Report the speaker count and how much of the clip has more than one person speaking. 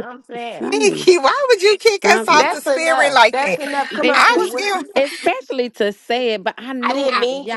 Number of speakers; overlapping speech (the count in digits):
3, about 48%